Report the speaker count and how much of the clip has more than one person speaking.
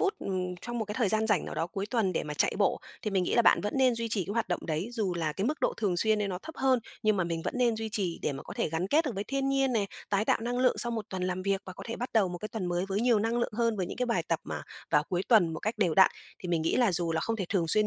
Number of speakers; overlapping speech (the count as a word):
one, no overlap